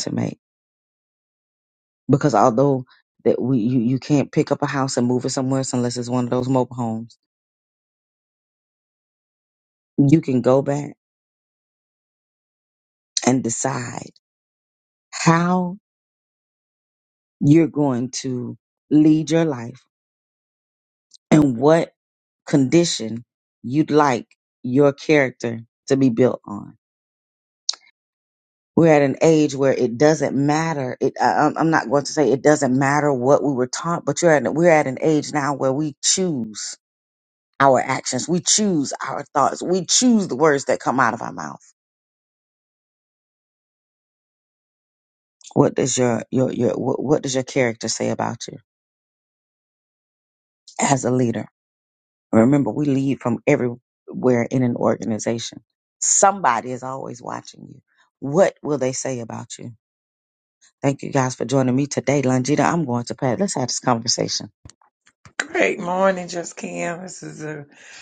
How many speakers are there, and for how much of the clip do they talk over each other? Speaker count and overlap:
2, no overlap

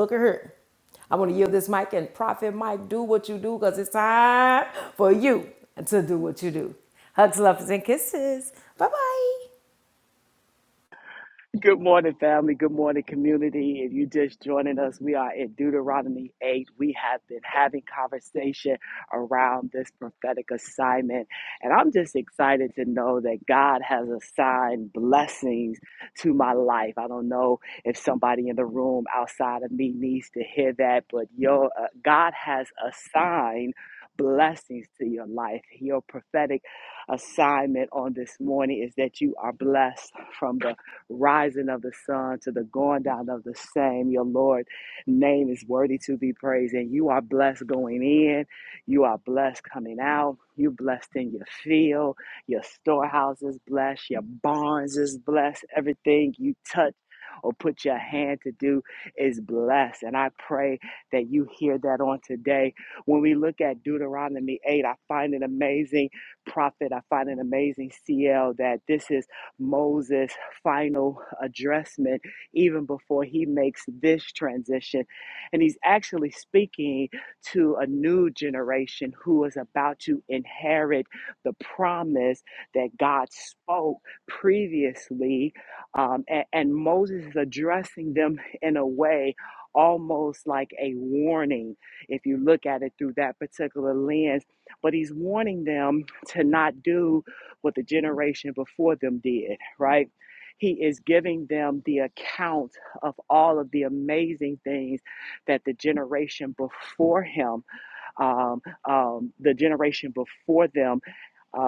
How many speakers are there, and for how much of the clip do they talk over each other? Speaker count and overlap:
2, no overlap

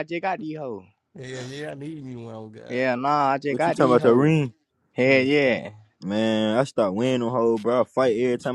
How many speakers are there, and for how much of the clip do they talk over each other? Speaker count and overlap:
3, about 13%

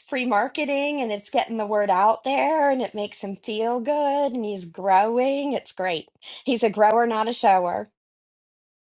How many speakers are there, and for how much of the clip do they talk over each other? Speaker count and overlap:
1, no overlap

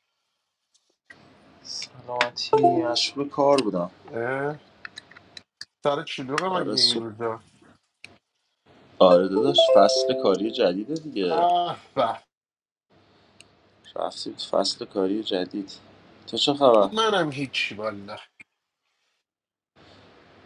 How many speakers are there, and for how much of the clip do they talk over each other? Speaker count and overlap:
2, about 4%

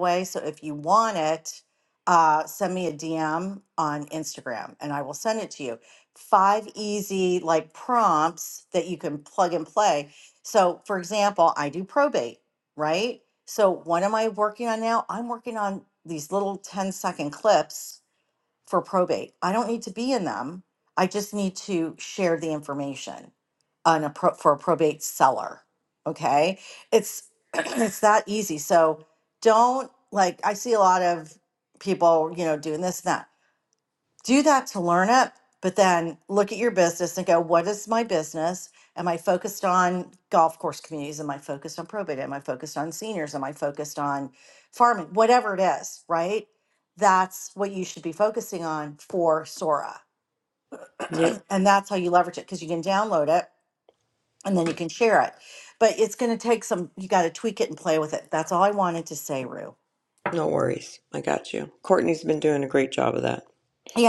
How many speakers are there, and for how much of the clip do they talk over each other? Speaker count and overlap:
2, no overlap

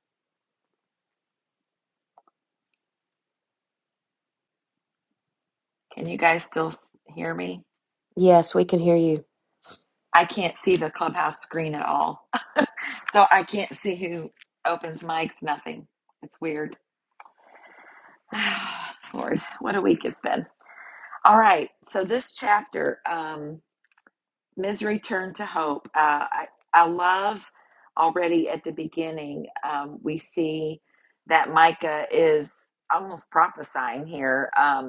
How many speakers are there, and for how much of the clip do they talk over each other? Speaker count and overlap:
2, no overlap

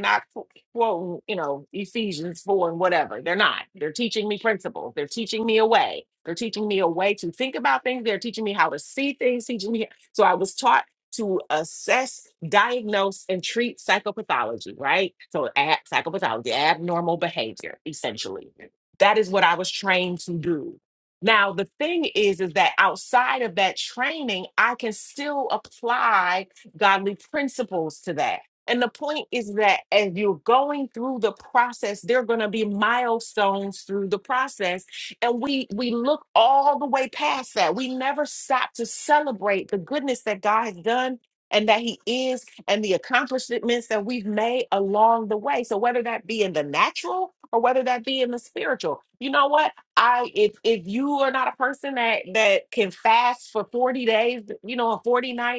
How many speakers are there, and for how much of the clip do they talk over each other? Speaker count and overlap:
1, no overlap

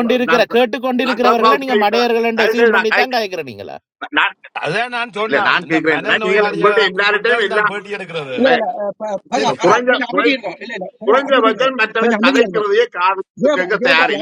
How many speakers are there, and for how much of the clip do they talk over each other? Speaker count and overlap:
4, about 60%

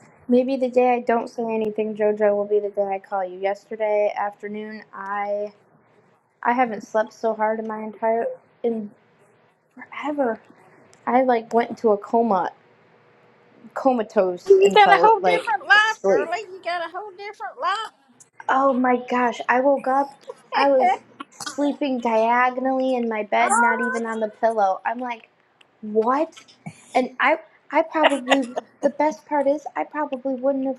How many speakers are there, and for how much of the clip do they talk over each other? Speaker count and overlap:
2, about 8%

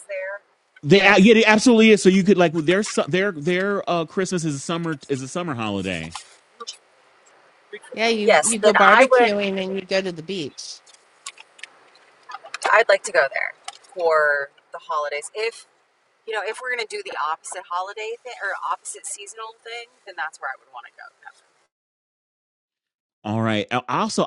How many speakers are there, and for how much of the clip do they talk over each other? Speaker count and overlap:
3, about 6%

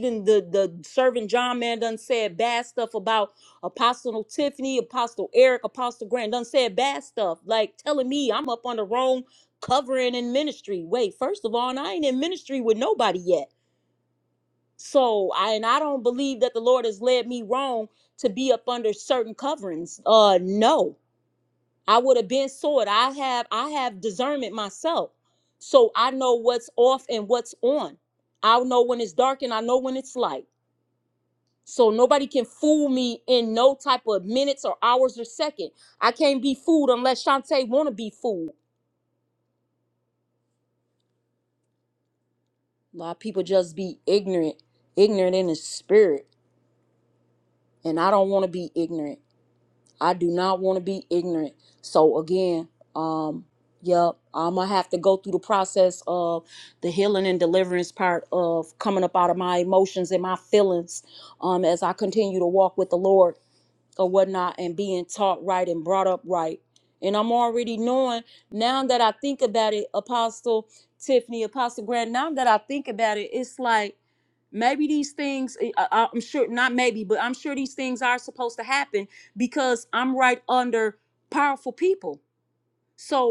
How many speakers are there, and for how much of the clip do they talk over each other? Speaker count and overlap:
1, no overlap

